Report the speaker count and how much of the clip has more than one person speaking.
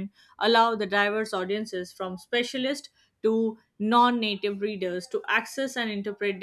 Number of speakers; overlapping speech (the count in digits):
1, no overlap